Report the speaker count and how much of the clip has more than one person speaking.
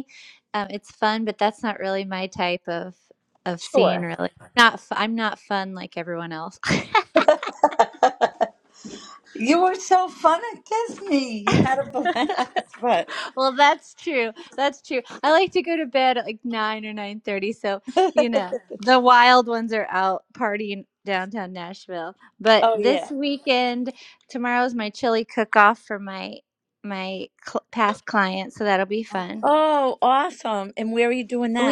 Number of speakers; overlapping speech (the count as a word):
two, about 3%